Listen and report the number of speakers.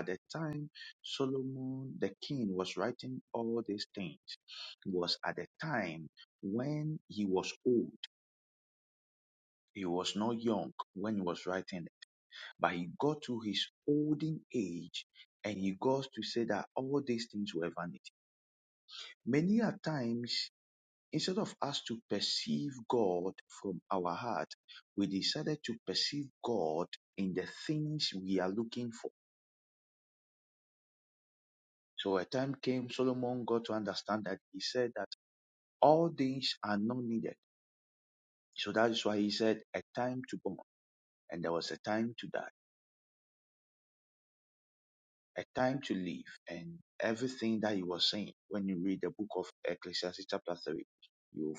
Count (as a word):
one